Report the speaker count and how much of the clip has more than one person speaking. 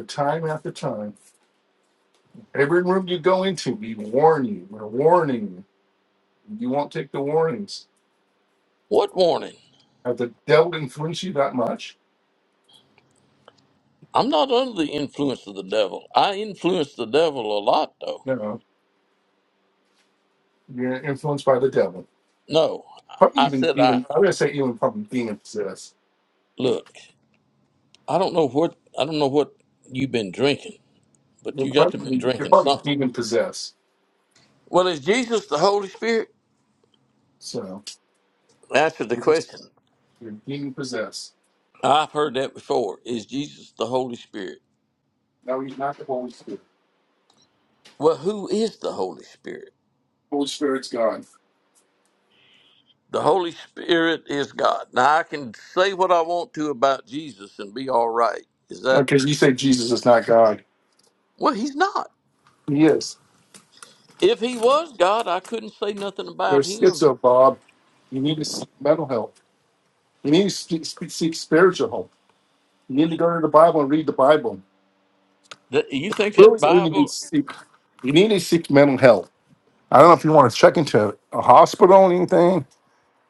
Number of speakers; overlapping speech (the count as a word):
two, about 4%